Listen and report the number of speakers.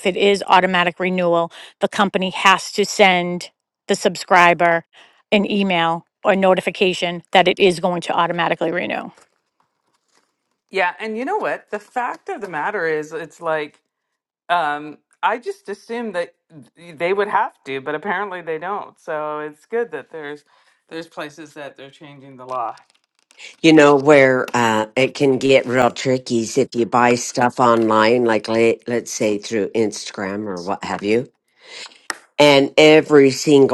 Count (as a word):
three